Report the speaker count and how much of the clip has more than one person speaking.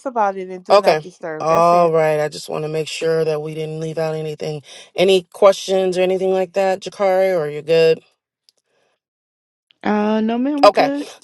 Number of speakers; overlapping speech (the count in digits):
3, about 10%